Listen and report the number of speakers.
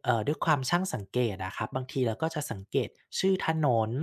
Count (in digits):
1